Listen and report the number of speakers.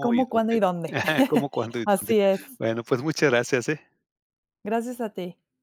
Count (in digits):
2